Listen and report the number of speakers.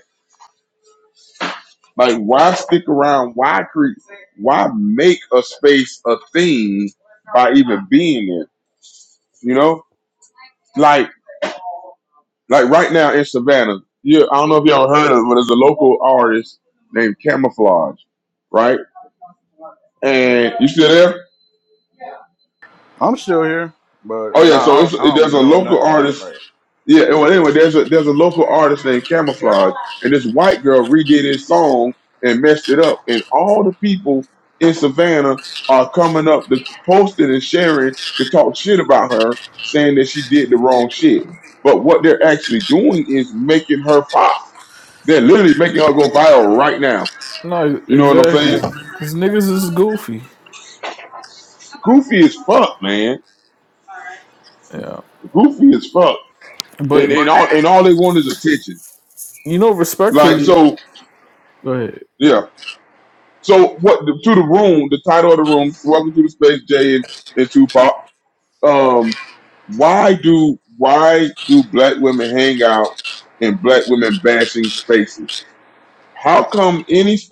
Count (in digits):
3